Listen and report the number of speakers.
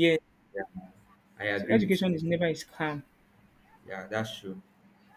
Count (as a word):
two